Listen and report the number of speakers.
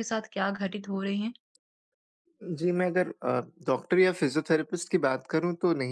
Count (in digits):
2